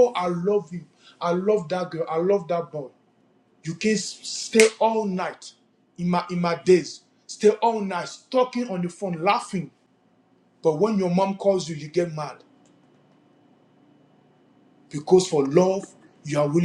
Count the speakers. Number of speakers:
1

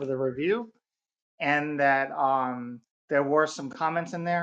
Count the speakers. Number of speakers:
1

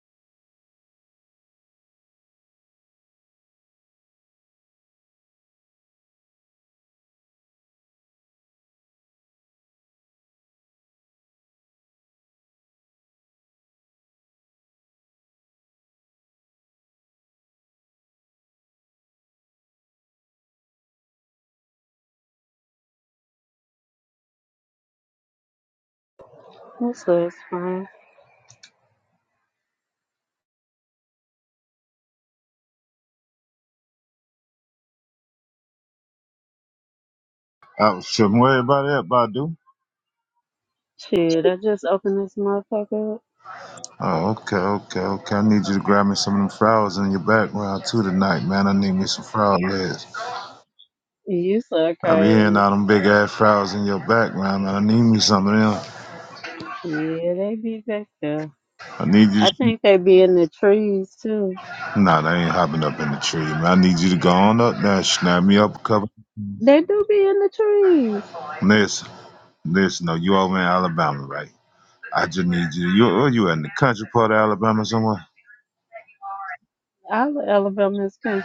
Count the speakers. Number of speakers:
2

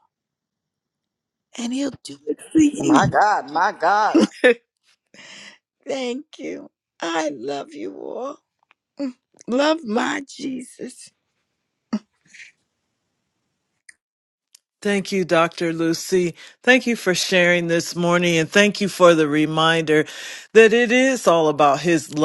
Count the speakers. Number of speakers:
3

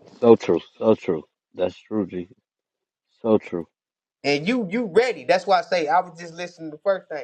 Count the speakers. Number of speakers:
2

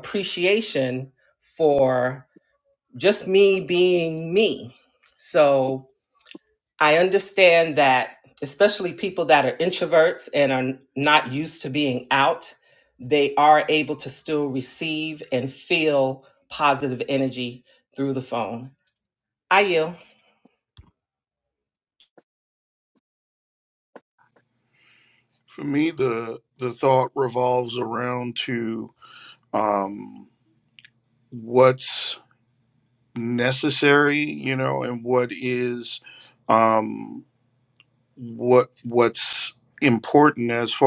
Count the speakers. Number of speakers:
2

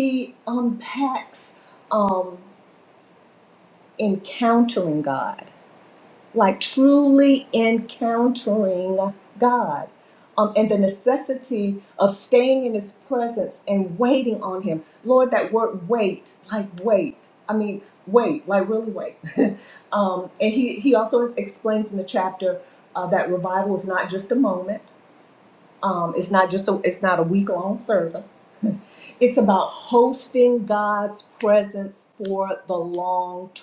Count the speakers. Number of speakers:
1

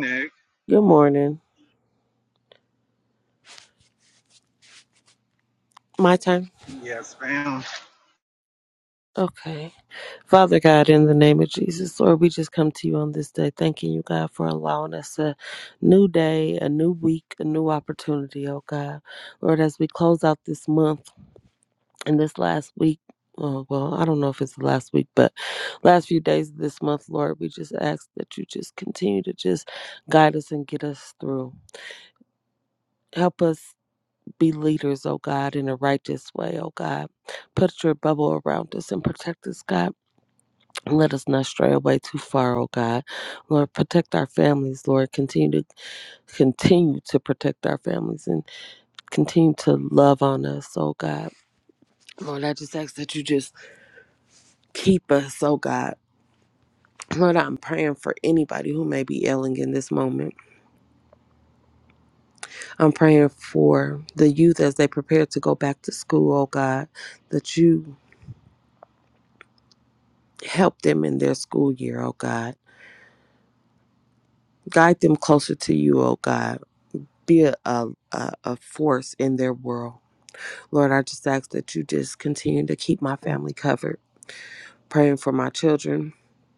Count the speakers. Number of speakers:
2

